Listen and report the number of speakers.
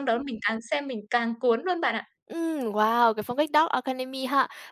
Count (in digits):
2